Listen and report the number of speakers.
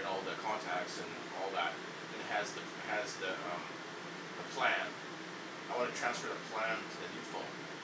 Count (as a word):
one